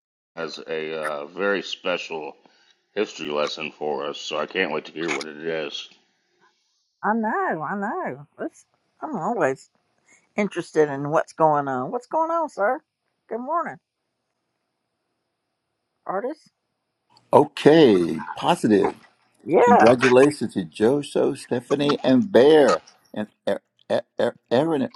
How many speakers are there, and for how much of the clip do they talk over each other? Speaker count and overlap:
three, about 2%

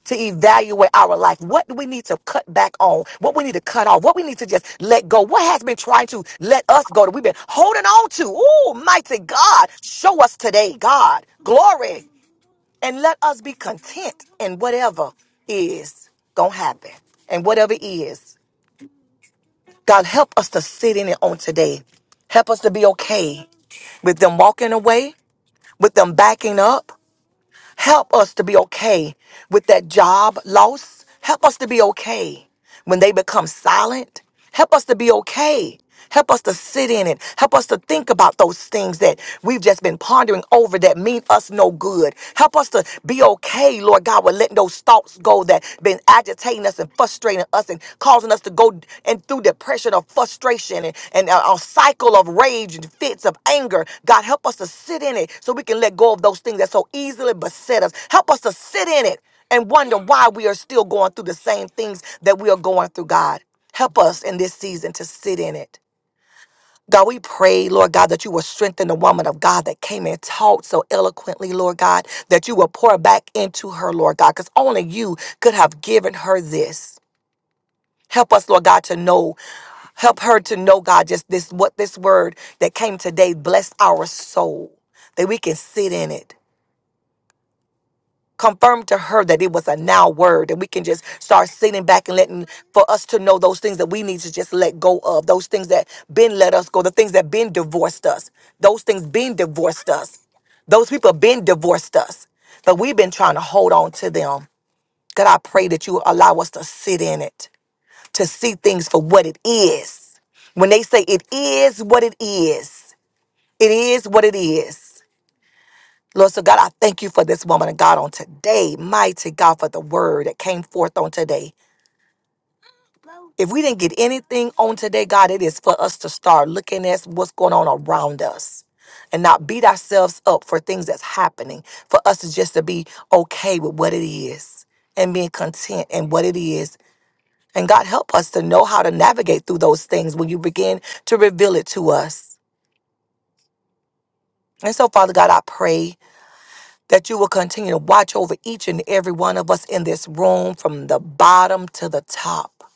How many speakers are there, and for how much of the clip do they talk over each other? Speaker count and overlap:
one, no overlap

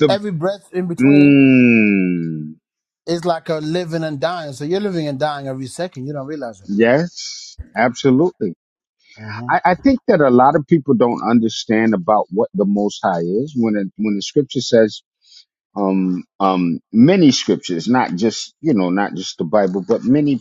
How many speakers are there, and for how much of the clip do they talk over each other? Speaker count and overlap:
two, about 3%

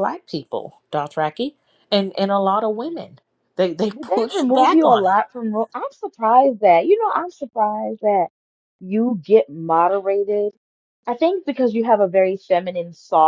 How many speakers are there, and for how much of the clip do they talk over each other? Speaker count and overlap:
two, about 6%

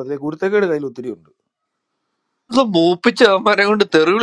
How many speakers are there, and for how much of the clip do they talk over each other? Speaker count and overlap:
two, no overlap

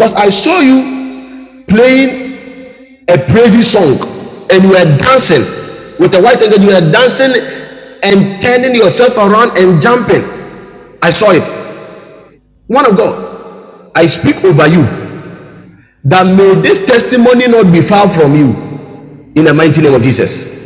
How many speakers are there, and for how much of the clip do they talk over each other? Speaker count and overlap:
one, no overlap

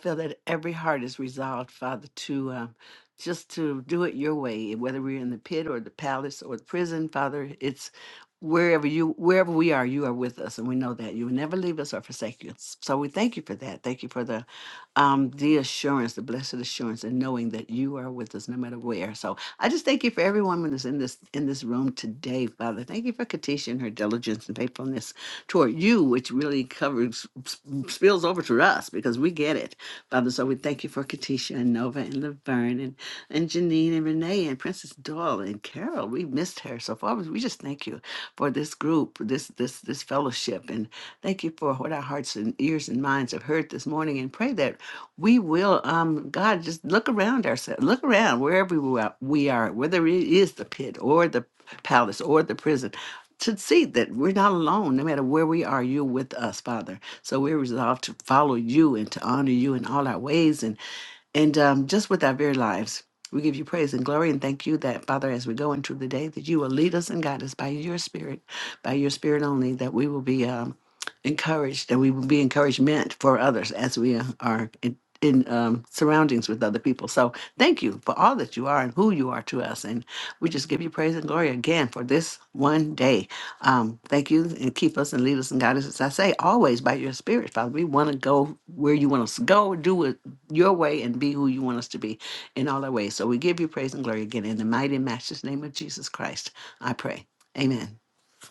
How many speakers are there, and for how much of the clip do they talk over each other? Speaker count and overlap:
one, no overlap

